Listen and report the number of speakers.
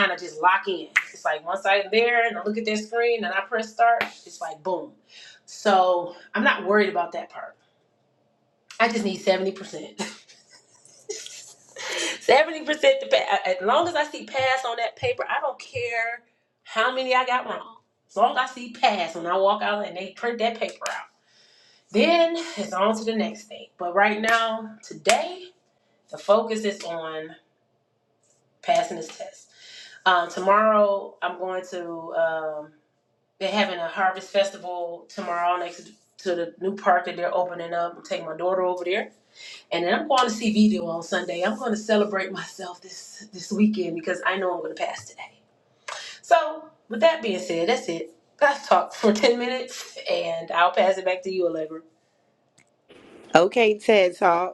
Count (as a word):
two